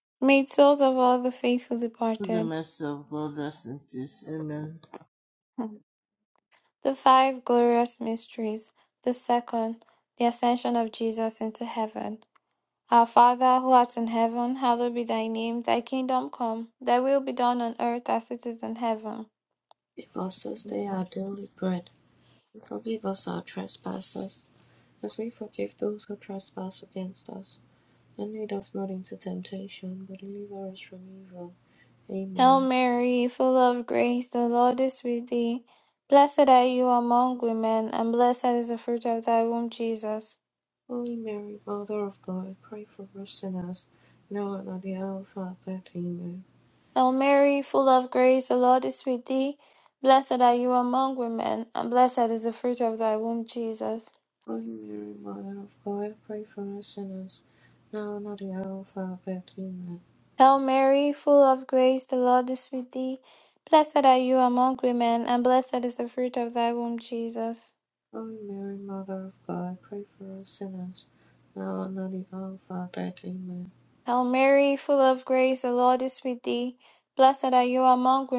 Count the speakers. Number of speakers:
3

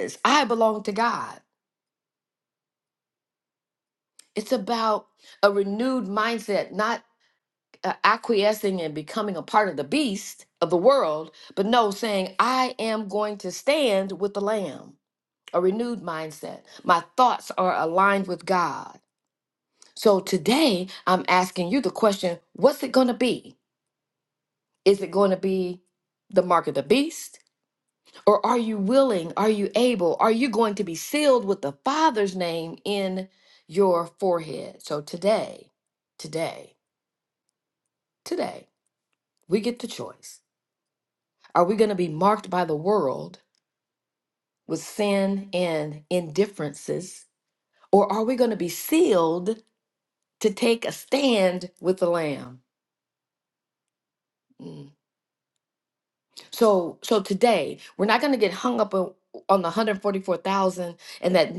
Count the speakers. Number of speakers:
1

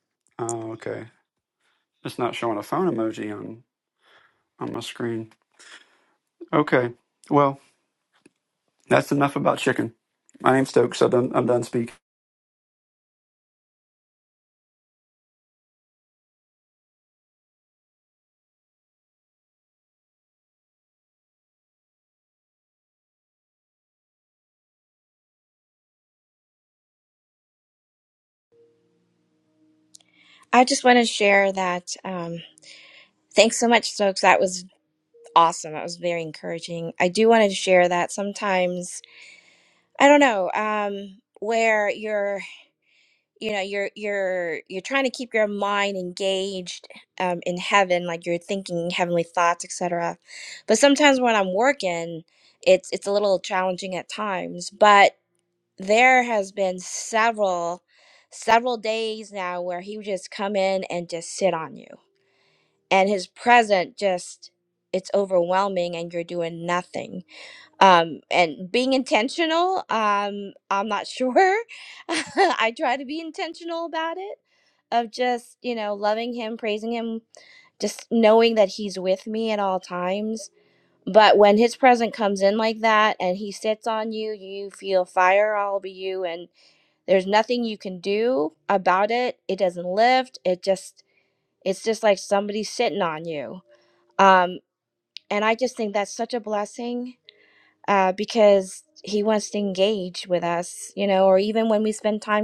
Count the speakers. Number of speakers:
2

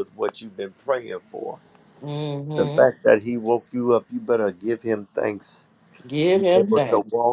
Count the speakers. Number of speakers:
2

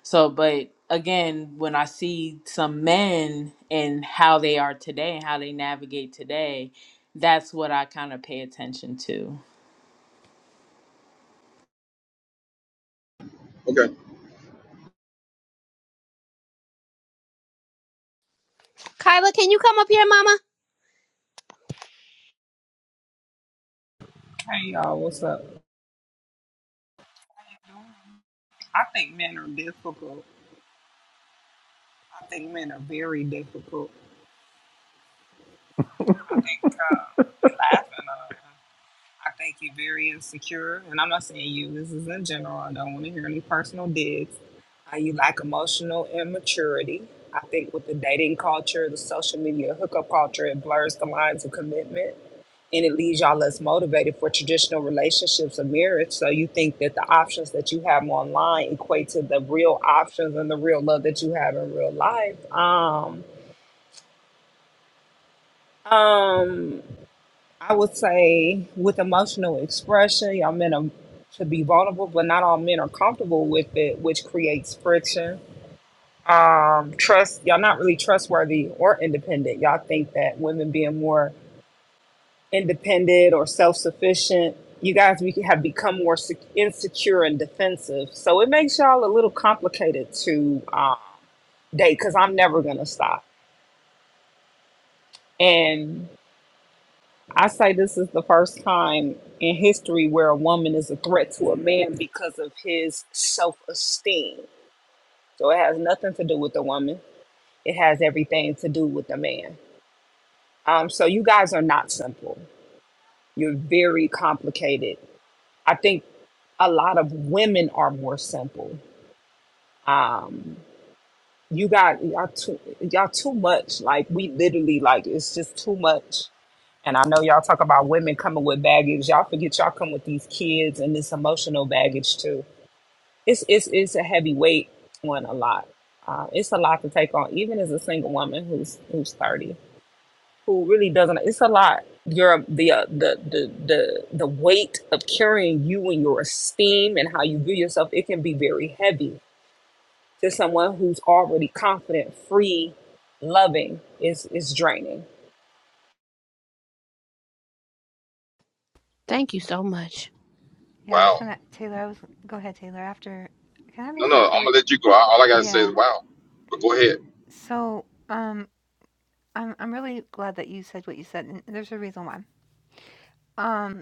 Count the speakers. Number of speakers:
5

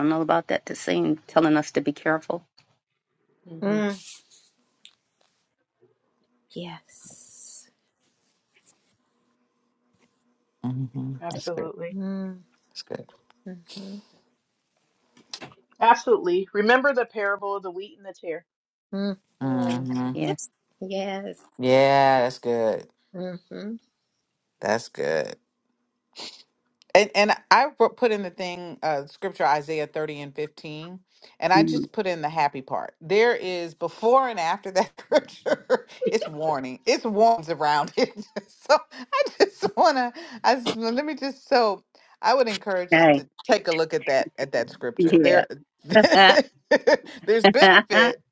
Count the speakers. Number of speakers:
4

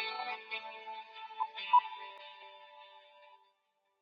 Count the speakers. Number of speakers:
0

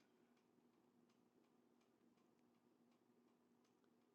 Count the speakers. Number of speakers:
0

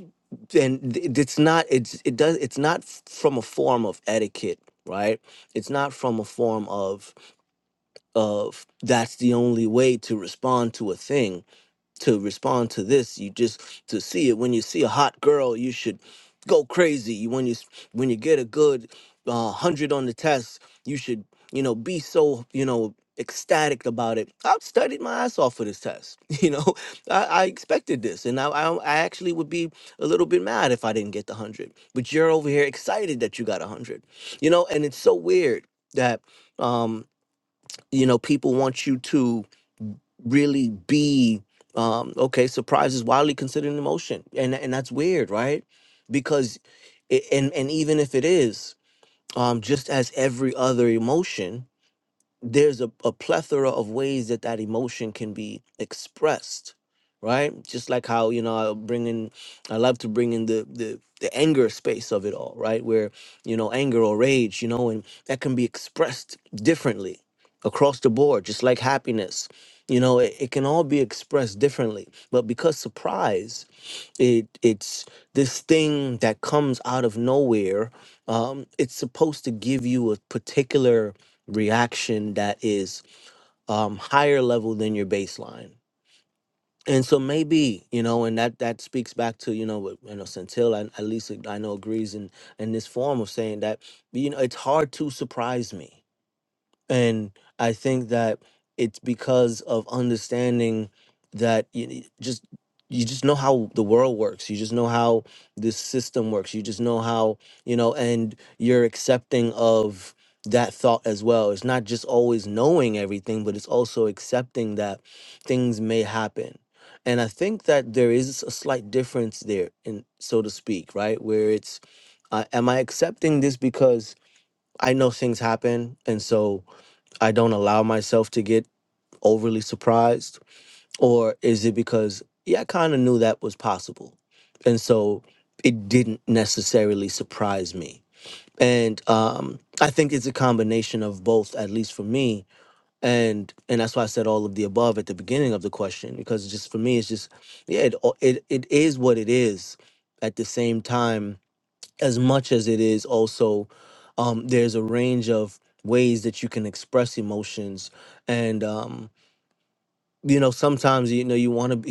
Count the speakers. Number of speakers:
1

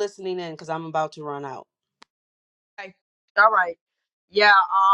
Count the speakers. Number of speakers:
2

